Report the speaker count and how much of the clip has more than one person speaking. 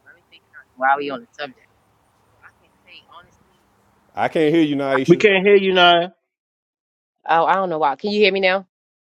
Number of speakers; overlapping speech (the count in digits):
3, about 2%